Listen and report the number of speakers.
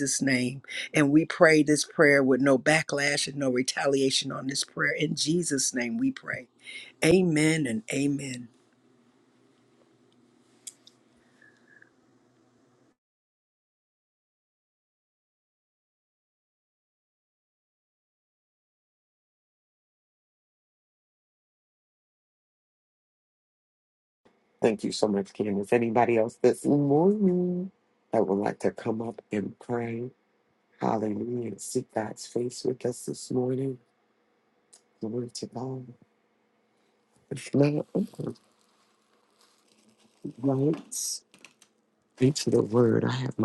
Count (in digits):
2